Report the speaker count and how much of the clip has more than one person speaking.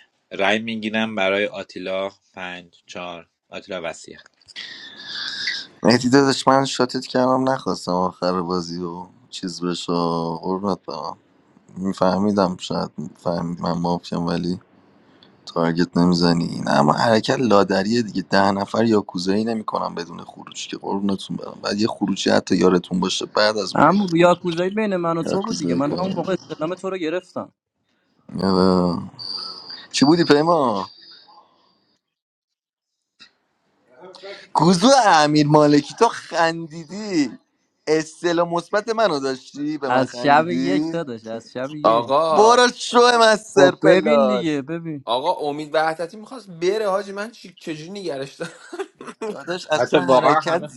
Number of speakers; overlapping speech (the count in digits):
4, about 10%